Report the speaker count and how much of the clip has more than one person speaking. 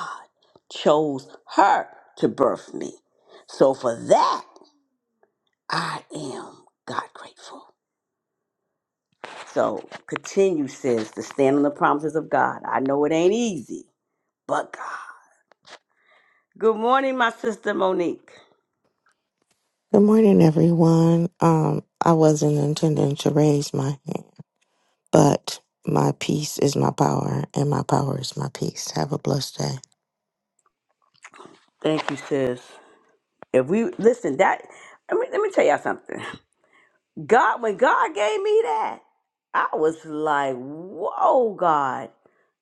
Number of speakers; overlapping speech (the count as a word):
two, no overlap